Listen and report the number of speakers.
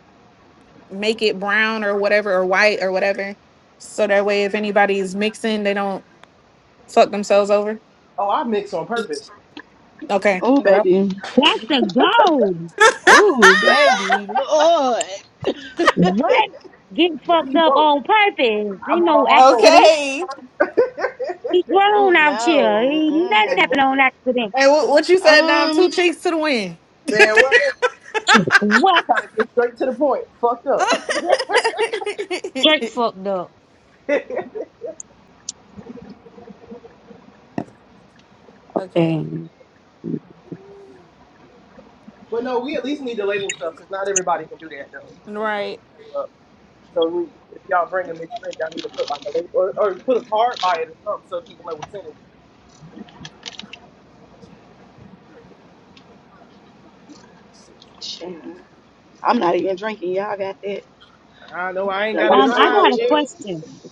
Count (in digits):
4